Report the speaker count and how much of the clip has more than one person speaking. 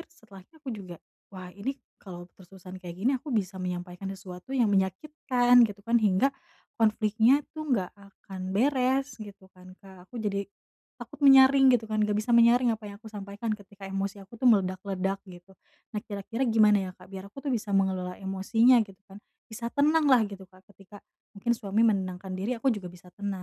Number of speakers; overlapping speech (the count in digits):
1, no overlap